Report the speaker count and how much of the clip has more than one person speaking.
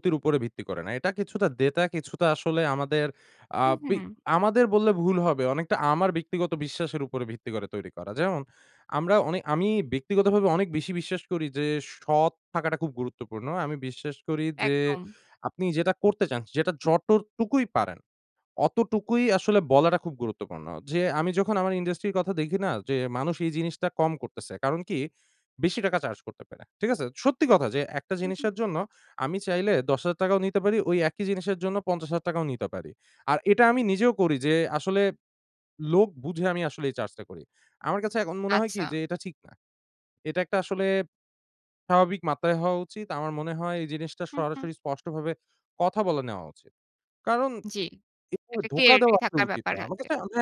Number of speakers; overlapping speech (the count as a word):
two, about 6%